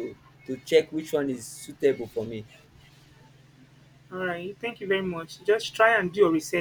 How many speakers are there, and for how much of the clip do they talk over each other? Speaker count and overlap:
2, no overlap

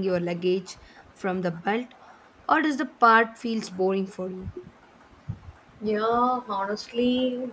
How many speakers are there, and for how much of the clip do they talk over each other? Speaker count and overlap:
2, no overlap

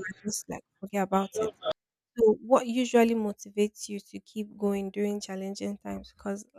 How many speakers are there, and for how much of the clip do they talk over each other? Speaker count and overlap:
1, no overlap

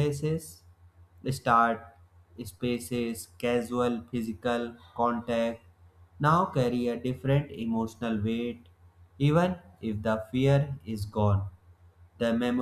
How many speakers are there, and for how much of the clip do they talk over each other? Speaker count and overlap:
1, no overlap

